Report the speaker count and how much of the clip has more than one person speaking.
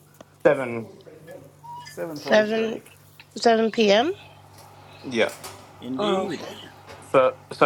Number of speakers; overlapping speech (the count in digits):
3, about 15%